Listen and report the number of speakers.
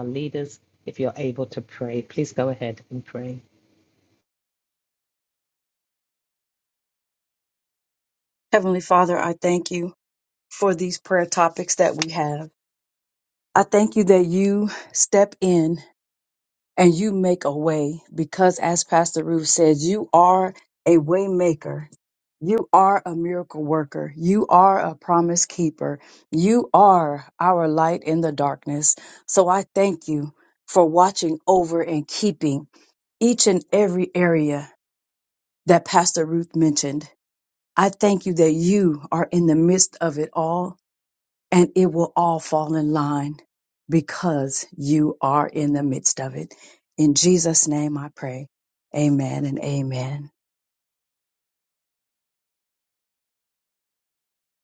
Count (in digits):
2